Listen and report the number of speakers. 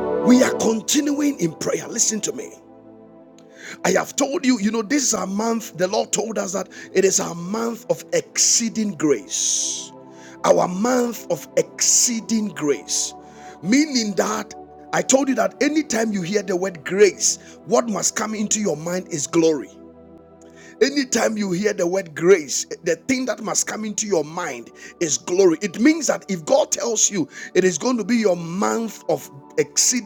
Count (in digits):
1